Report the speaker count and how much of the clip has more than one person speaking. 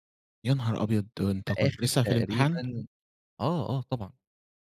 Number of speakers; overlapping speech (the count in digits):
2, about 26%